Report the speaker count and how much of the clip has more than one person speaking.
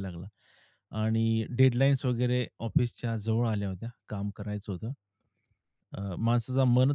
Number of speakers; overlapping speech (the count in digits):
1, no overlap